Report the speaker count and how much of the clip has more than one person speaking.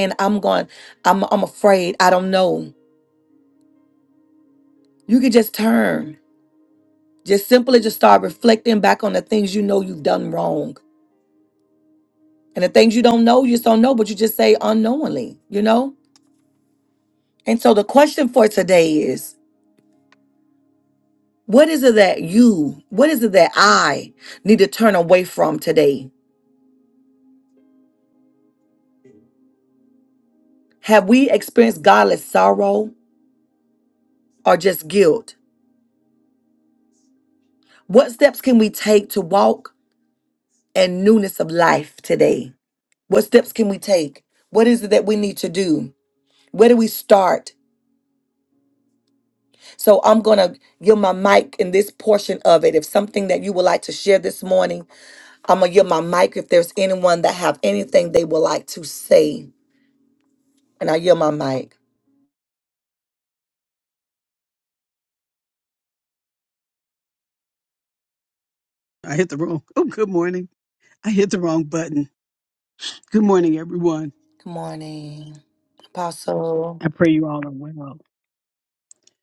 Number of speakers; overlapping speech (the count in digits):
2, no overlap